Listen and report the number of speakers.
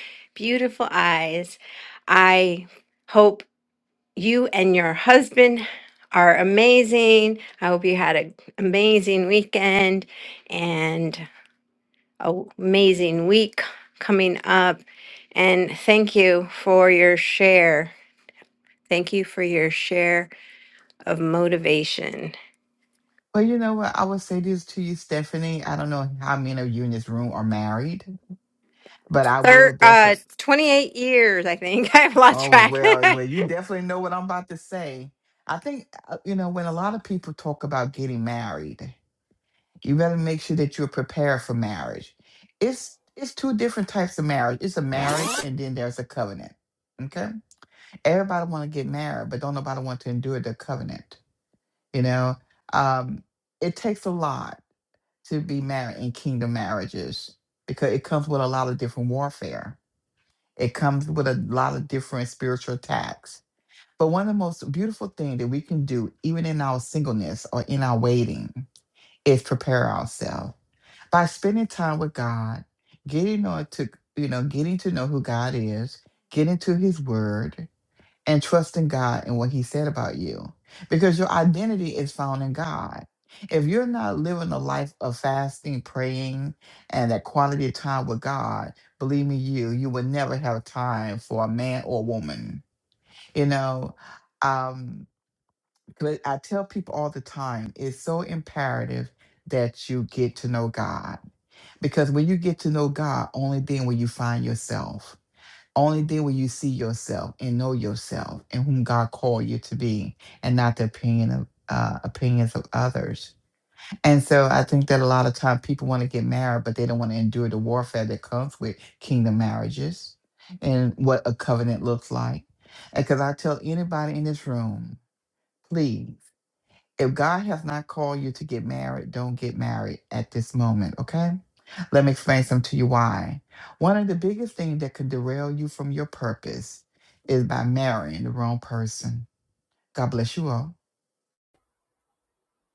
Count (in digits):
2